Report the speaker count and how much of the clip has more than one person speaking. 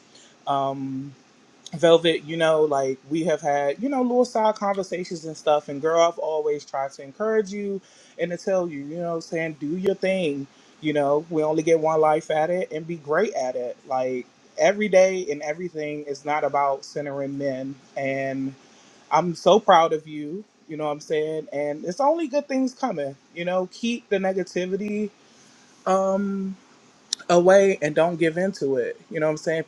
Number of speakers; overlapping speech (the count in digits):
1, no overlap